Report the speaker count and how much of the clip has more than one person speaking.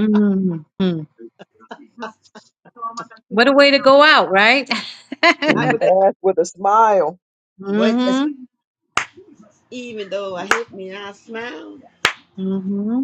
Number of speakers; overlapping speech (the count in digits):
3, about 8%